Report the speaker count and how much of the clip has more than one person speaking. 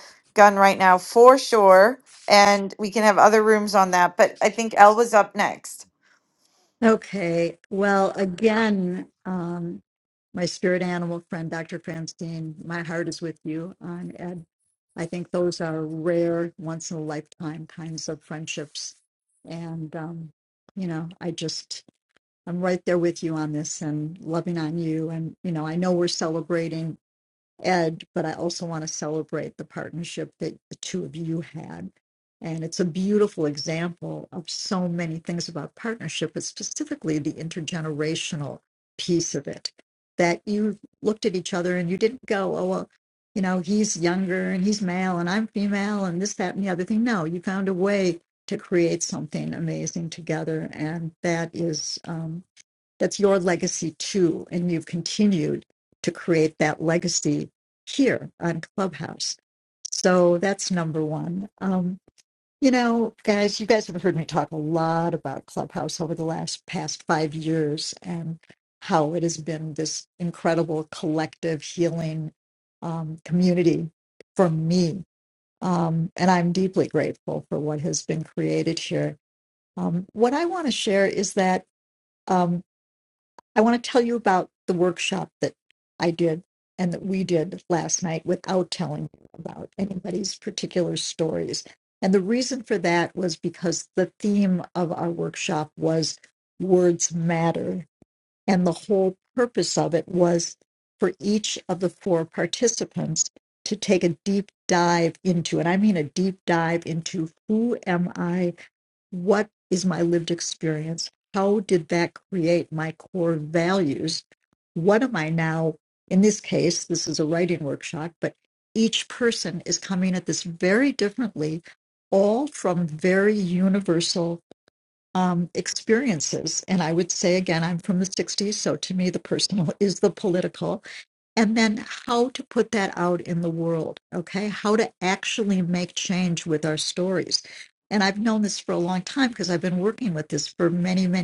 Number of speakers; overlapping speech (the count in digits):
2, no overlap